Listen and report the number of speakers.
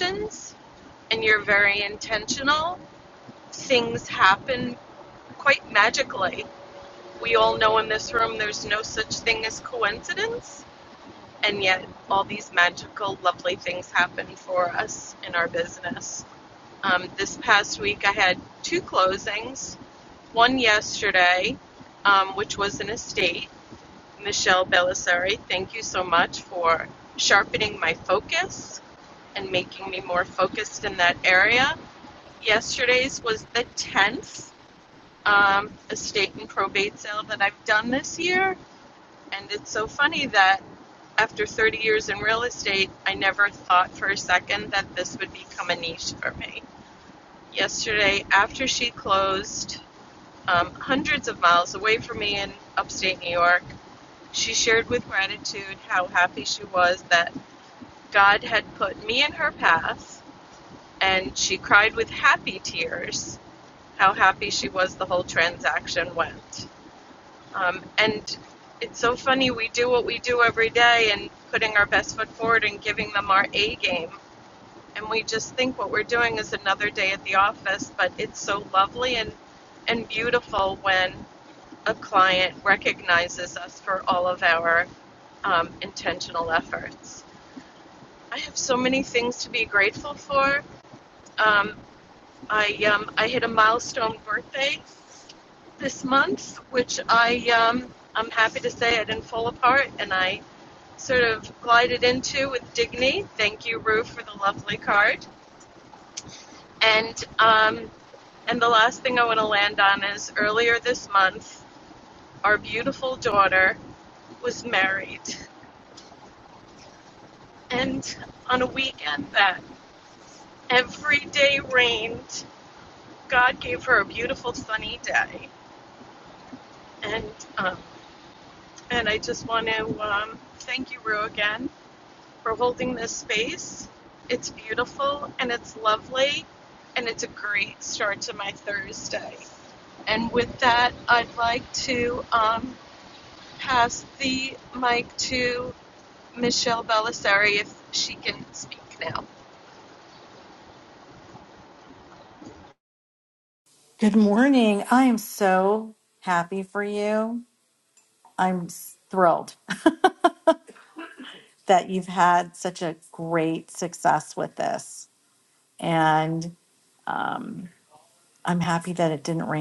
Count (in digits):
2